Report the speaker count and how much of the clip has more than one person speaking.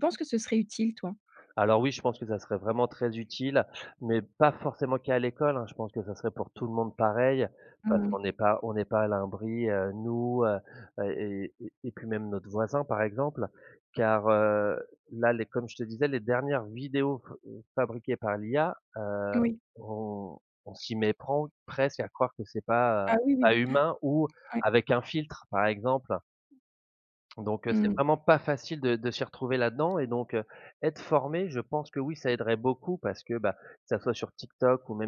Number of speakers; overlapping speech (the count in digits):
2, about 4%